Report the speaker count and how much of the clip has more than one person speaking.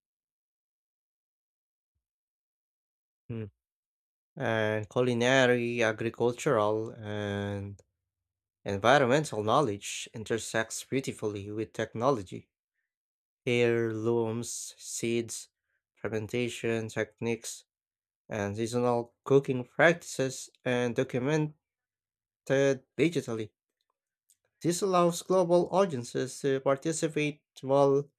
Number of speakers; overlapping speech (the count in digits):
1, no overlap